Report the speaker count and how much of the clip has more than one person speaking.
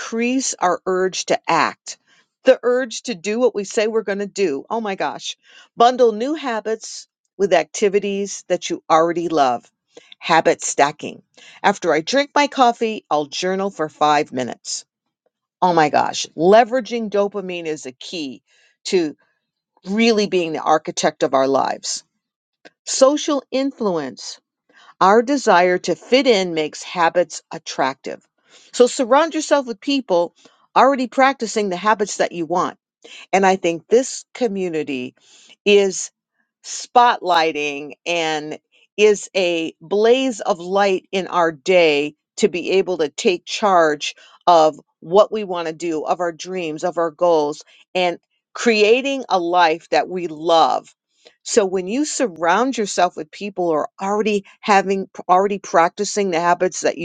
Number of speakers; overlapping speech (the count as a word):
one, no overlap